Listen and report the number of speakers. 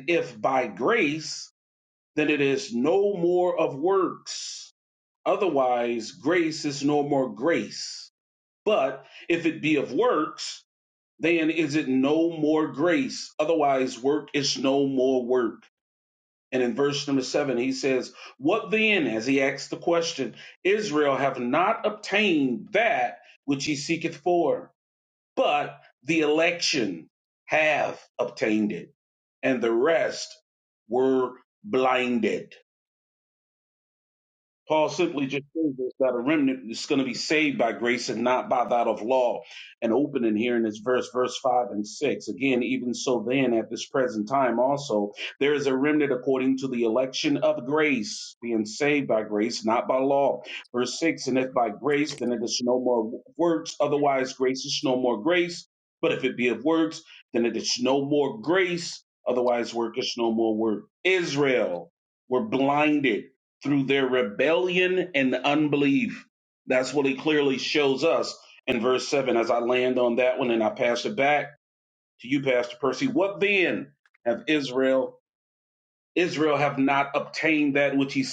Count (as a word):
one